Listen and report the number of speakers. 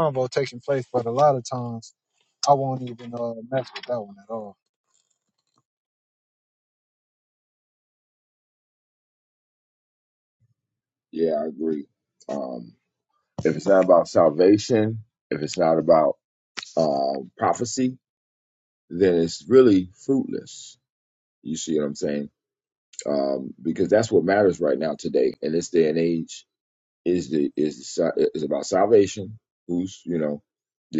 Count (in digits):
2